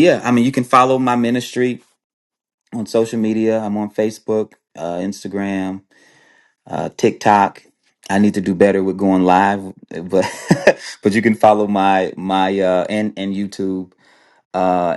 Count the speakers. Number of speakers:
1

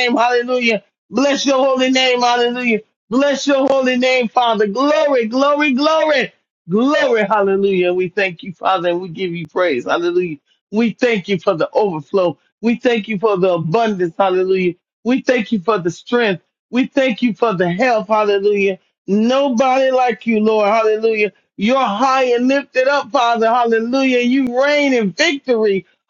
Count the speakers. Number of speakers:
1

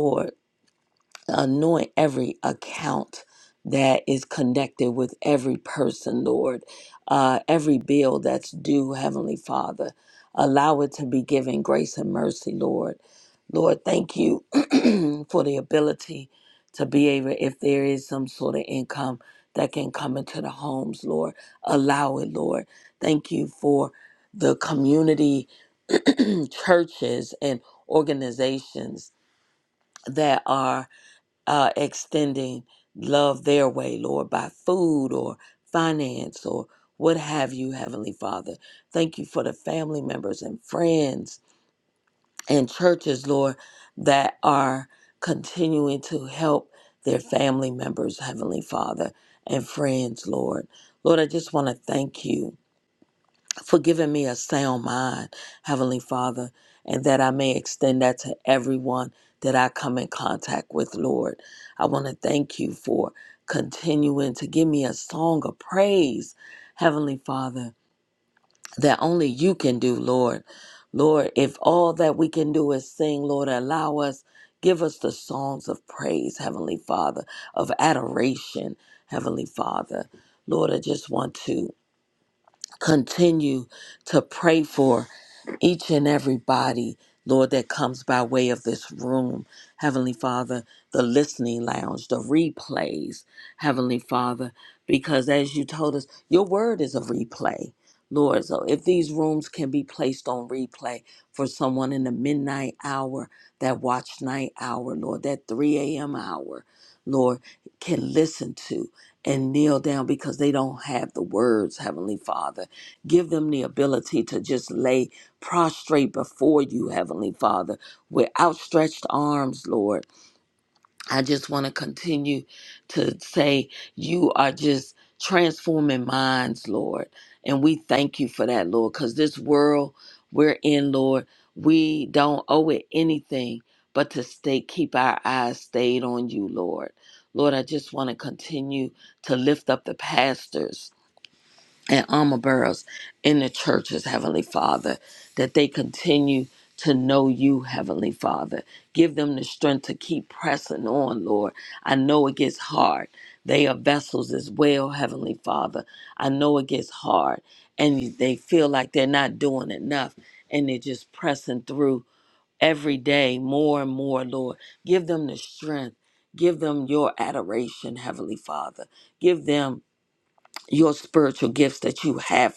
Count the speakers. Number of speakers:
1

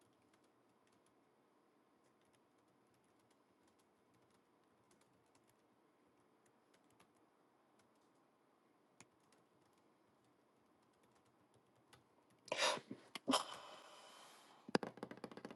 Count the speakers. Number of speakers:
0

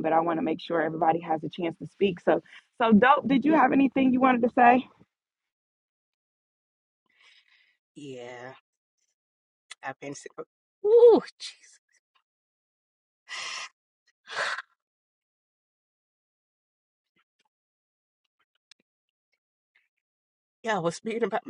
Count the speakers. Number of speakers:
2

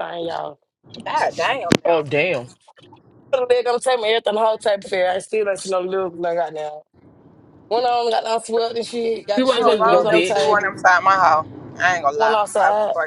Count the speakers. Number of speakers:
3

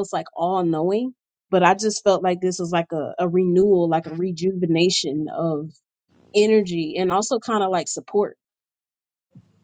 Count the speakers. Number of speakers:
1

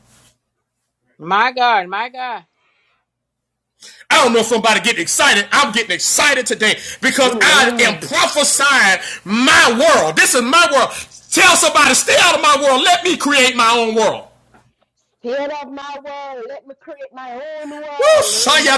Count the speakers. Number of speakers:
3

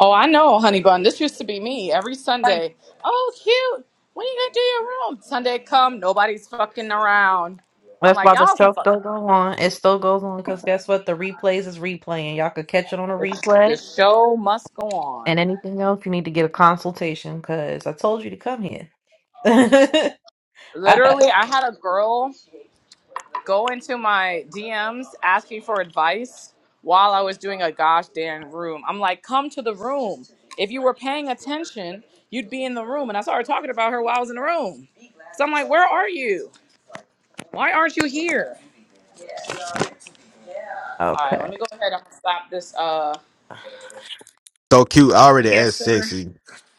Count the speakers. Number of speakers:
3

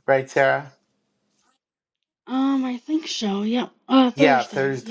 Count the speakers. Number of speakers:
2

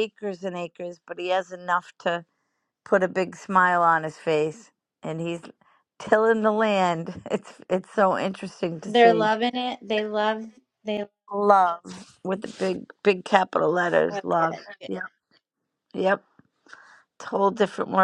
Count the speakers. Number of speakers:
2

